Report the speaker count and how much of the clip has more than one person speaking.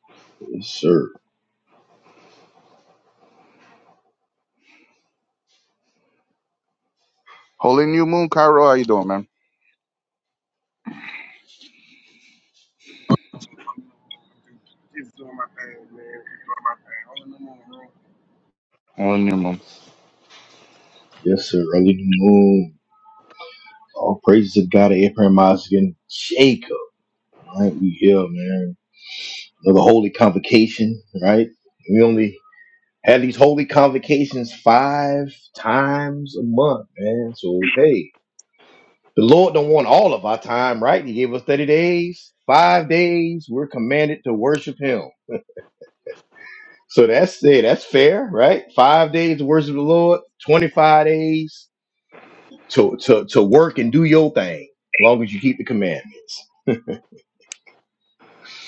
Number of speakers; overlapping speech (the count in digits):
3, no overlap